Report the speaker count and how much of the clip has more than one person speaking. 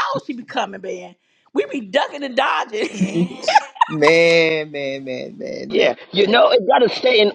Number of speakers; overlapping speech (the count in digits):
3, about 3%